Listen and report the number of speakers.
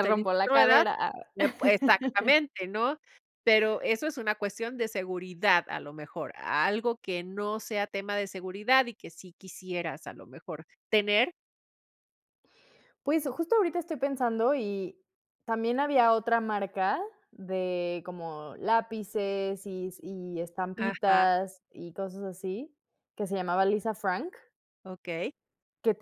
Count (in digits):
2